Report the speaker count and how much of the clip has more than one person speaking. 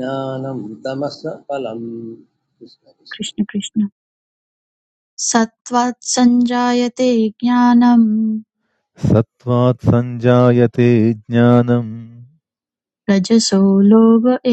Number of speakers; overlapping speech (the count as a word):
three, no overlap